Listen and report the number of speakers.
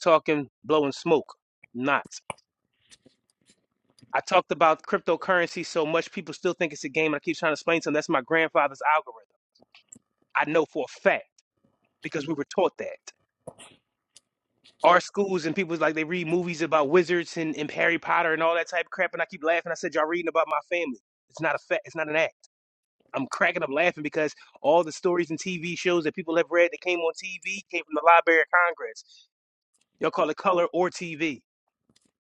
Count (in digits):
1